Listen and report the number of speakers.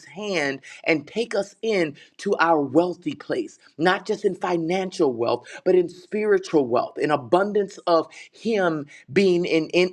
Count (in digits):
1